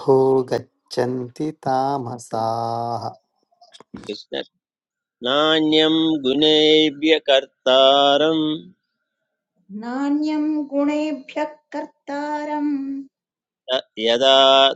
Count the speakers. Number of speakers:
3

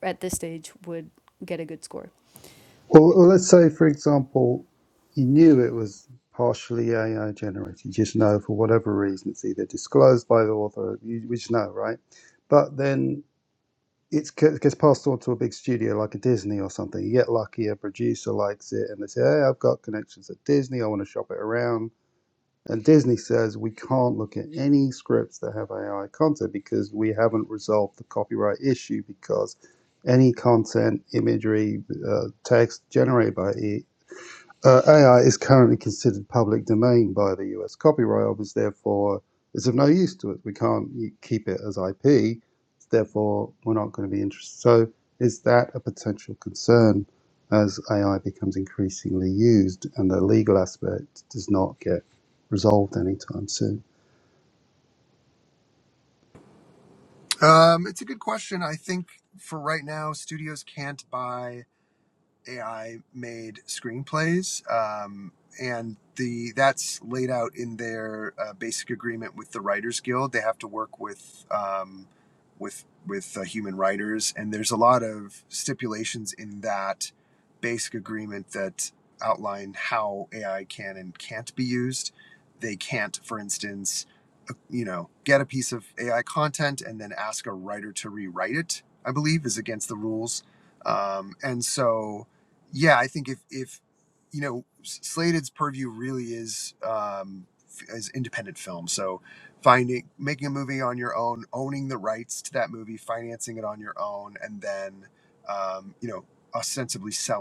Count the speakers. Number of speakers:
3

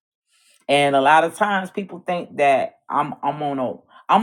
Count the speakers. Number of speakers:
1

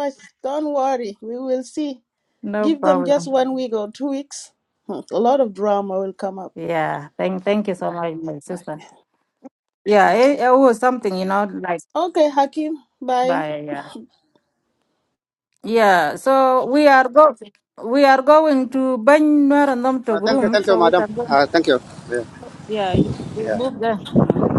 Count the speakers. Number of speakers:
3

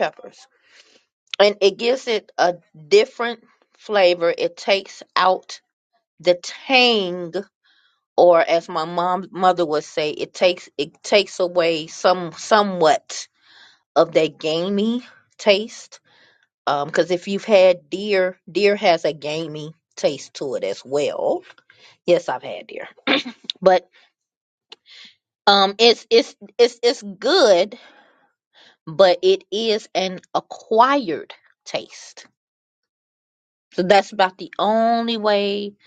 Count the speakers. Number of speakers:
1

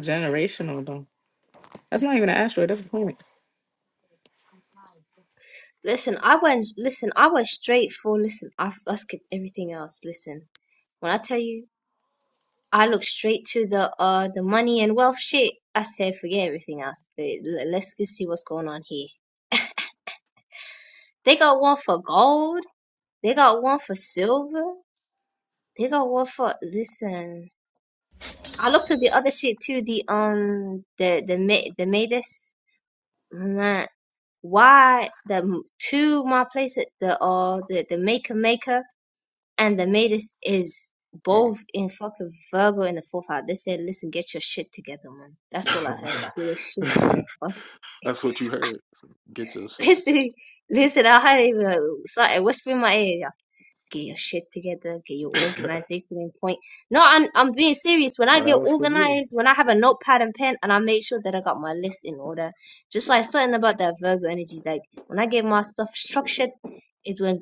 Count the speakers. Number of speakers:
3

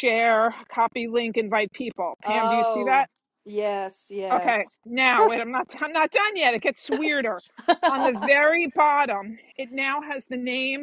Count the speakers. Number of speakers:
2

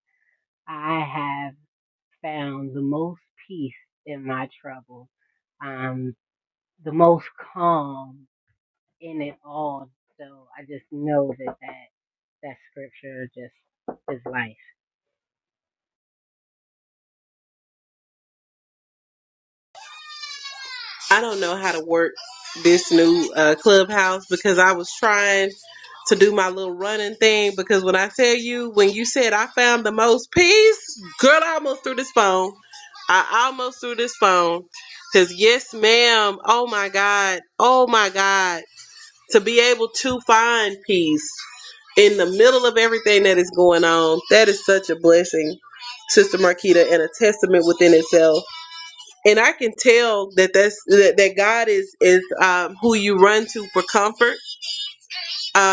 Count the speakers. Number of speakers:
2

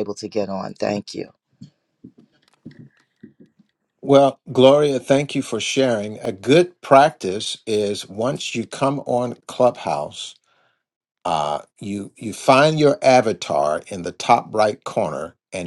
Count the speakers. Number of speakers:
2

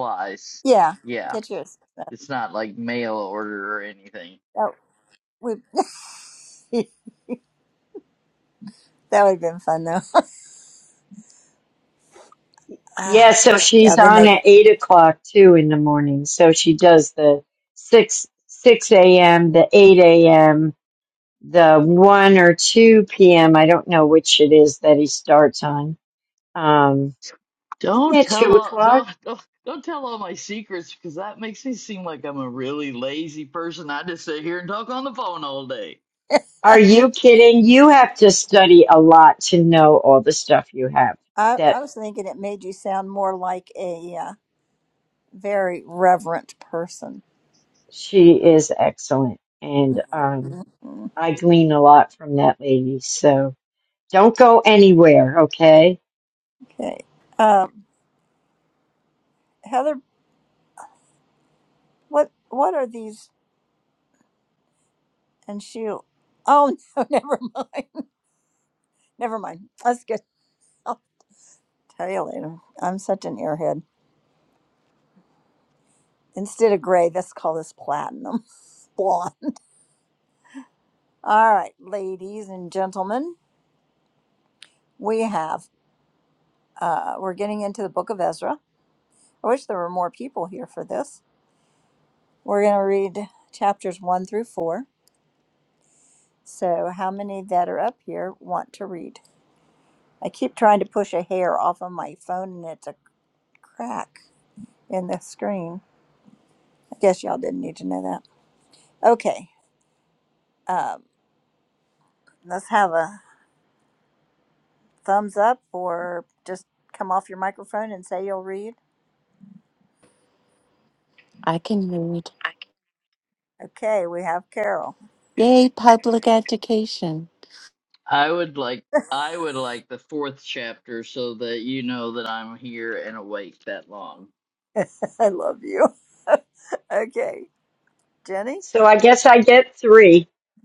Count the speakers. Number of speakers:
4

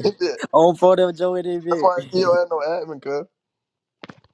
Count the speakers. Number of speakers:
2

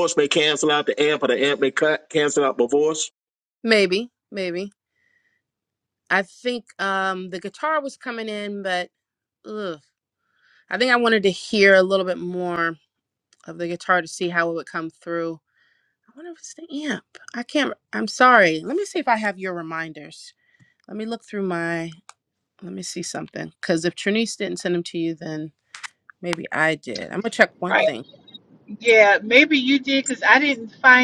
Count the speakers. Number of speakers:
3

